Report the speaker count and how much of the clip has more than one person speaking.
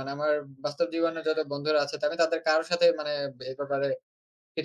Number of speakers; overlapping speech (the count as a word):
one, no overlap